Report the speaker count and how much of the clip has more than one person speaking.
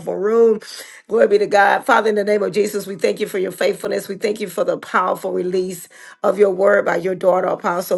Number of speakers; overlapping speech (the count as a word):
one, no overlap